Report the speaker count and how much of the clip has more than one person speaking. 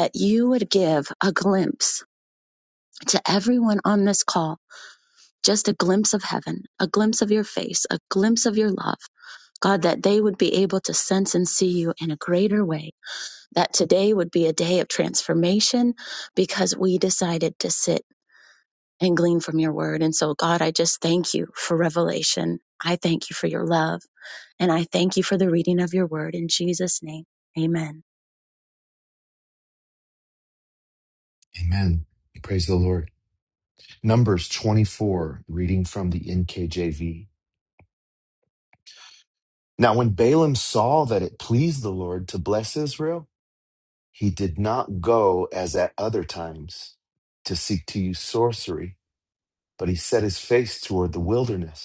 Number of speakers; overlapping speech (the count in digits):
2, no overlap